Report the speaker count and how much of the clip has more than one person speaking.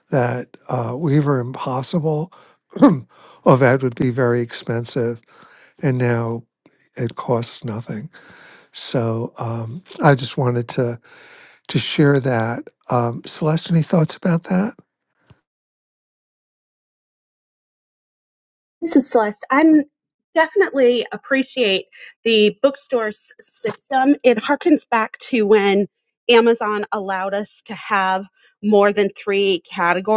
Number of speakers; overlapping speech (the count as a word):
two, no overlap